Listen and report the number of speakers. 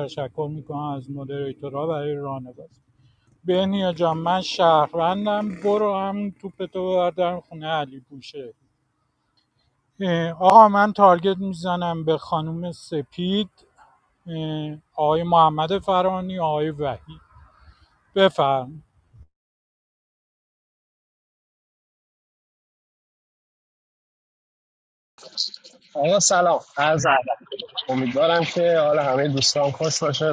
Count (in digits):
2